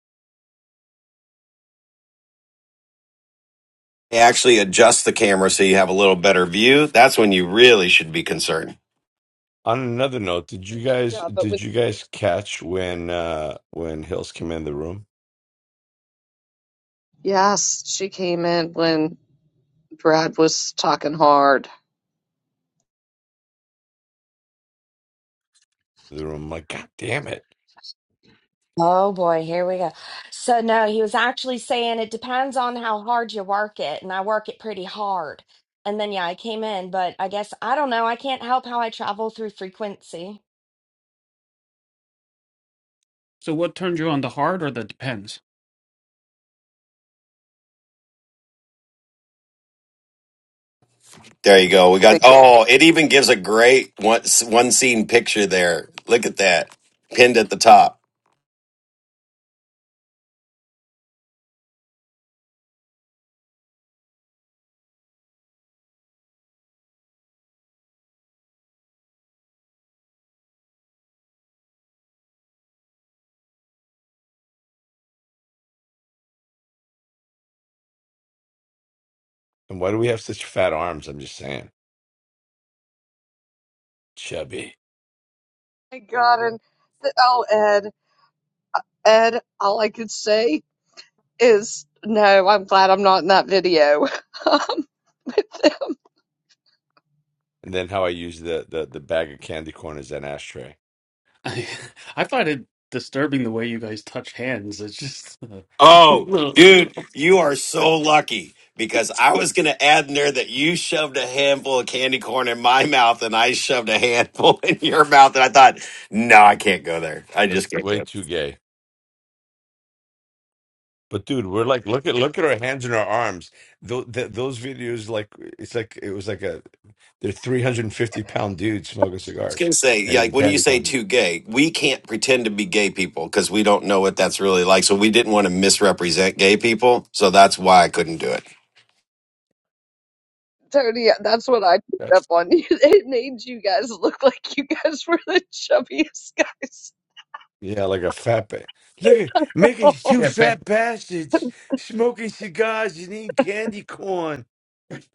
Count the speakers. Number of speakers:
five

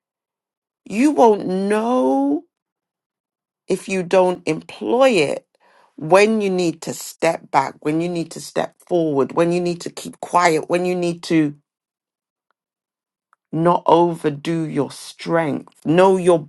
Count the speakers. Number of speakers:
one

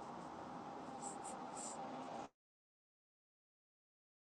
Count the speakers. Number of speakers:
zero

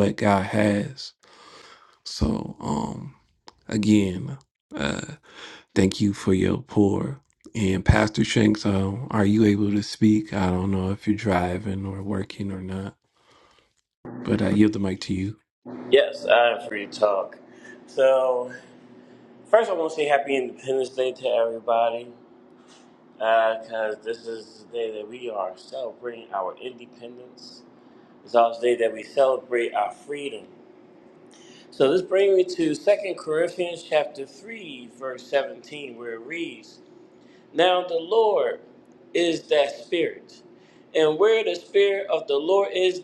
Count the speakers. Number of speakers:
two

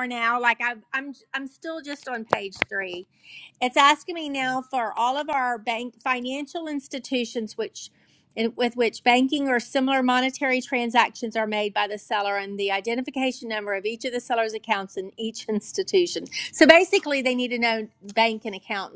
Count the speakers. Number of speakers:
one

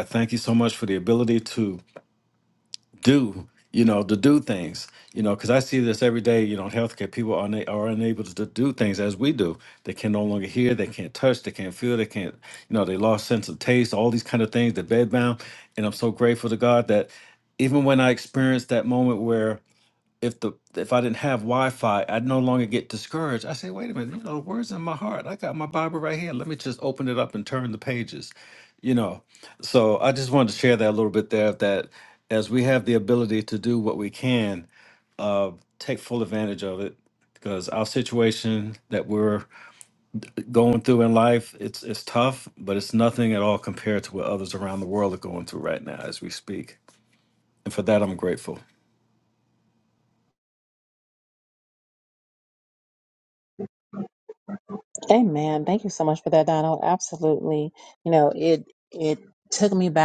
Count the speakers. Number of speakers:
two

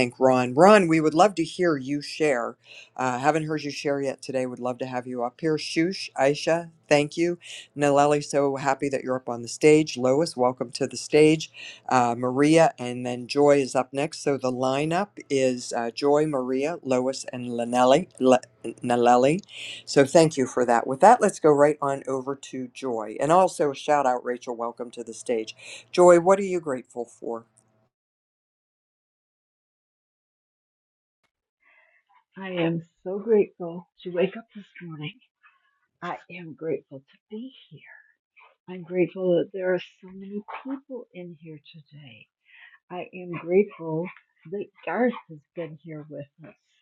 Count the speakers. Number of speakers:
two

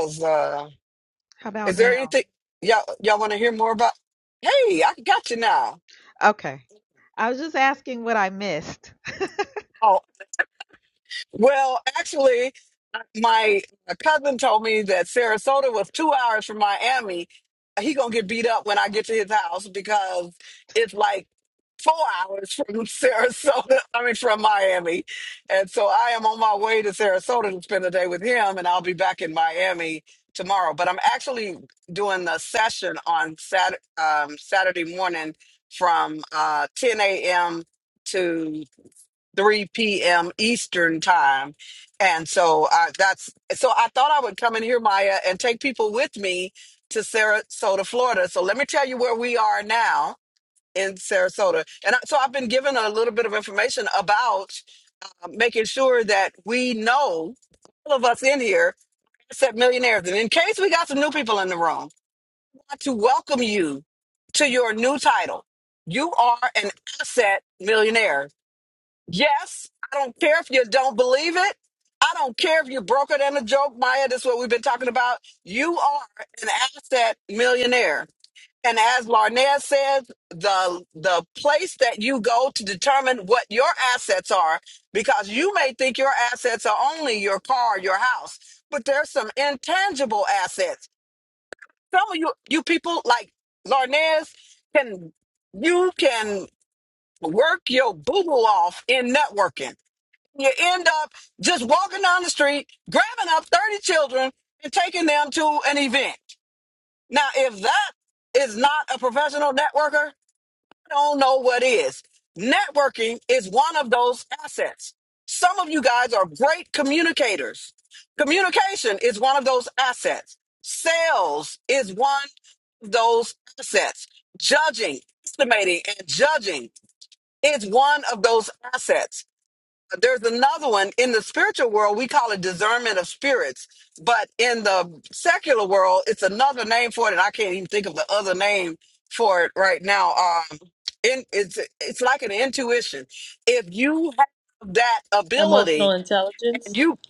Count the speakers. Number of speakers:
three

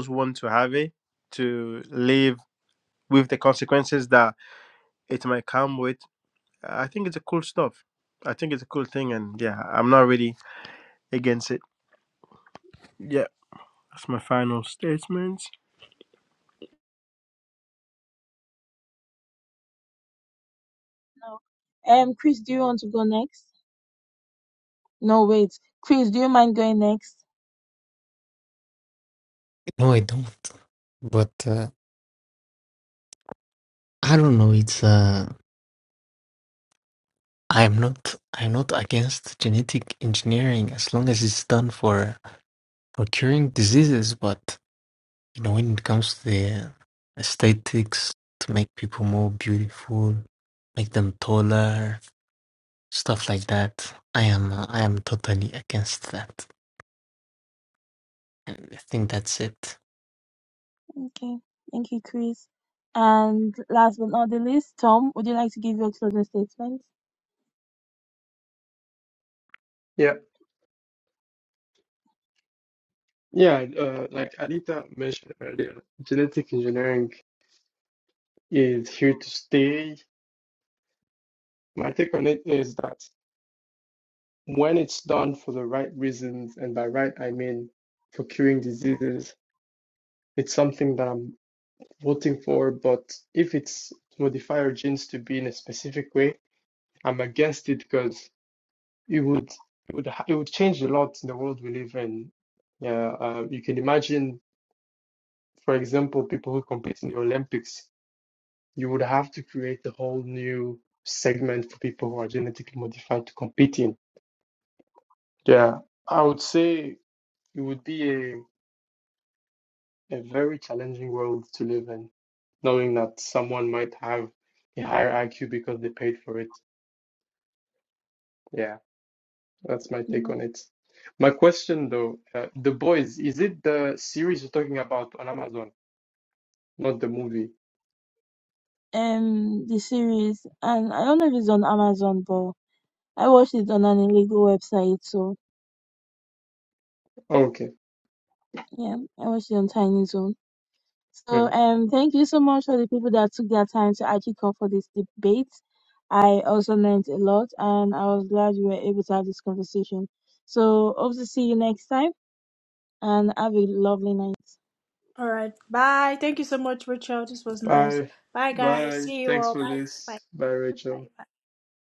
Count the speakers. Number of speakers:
five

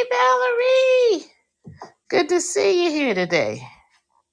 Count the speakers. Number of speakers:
one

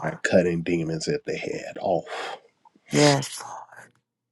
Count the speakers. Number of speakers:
two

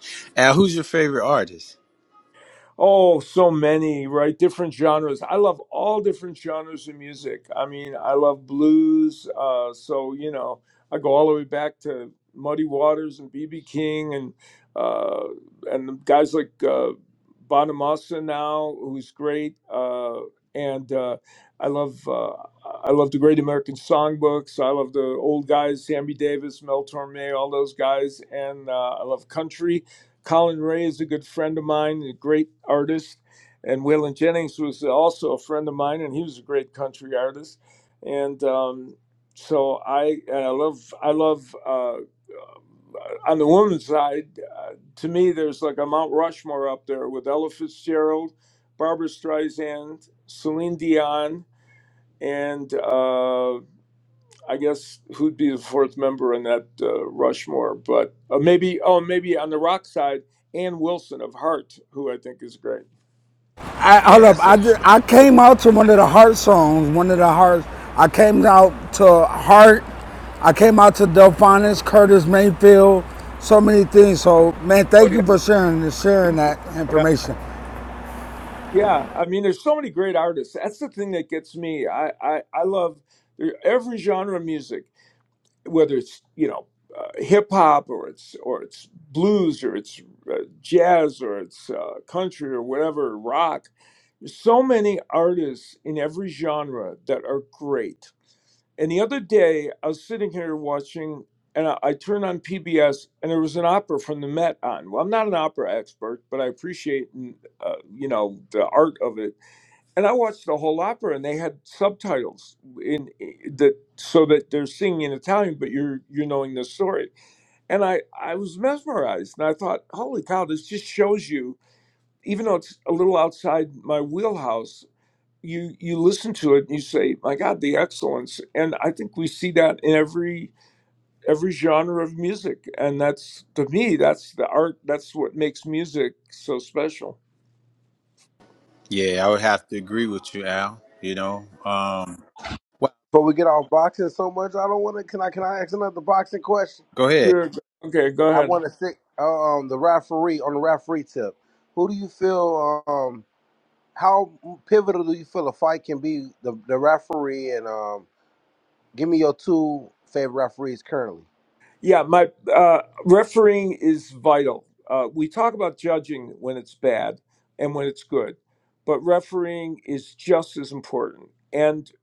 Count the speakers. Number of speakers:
four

